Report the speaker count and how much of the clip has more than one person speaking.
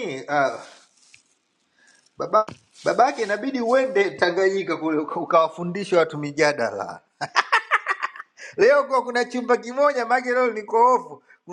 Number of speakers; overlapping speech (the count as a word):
one, no overlap